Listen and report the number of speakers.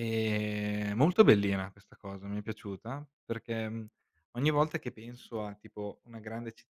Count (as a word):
one